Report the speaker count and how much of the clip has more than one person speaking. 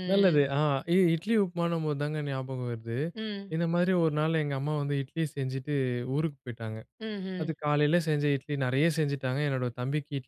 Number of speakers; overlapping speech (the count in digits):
2, about 4%